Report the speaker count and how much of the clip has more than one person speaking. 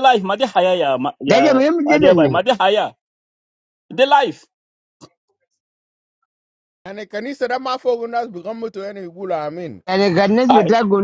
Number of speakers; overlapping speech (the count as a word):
three, about 9%